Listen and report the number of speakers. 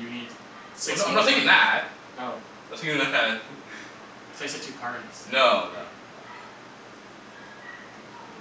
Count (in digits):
2